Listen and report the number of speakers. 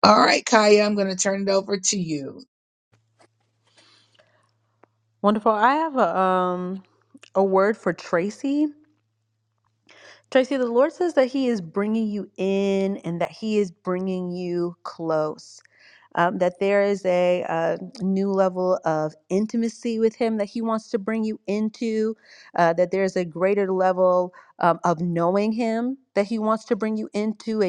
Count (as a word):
two